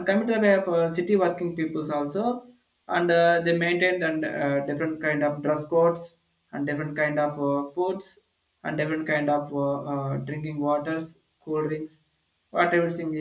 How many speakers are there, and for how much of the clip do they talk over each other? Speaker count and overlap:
1, no overlap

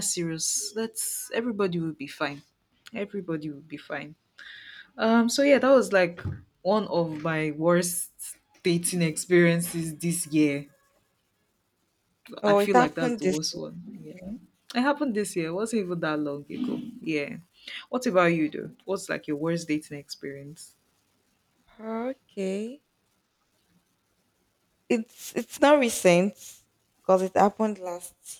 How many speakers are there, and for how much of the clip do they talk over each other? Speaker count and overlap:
2, about 4%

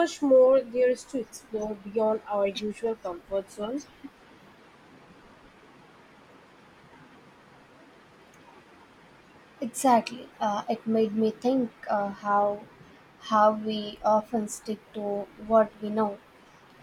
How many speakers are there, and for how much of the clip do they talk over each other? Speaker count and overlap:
2, no overlap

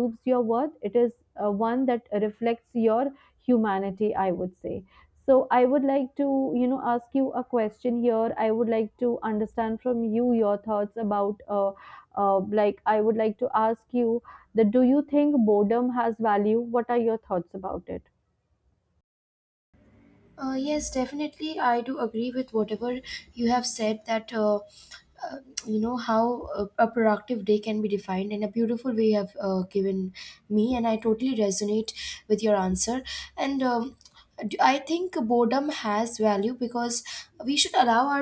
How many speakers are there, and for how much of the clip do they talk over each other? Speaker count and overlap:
2, no overlap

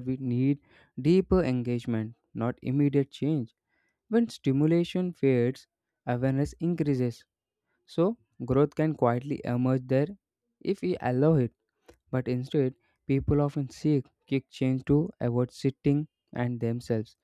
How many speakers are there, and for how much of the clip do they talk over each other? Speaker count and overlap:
1, no overlap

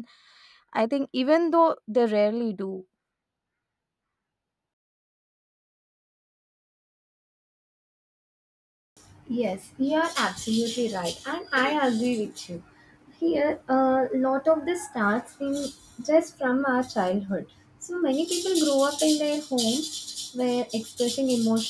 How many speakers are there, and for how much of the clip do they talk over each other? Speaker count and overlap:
2, no overlap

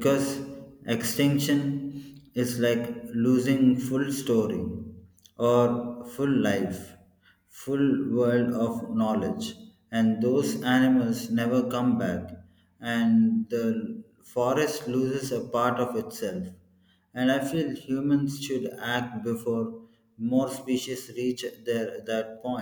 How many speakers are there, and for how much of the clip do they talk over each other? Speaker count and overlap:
1, no overlap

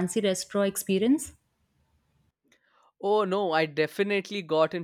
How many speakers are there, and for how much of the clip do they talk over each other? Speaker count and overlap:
2, no overlap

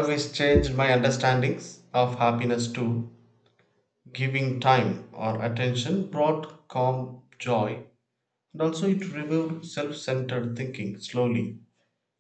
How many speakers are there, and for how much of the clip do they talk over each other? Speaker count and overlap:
1, no overlap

